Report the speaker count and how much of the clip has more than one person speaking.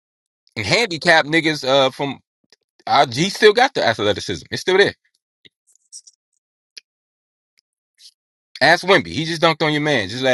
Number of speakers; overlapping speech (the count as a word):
one, no overlap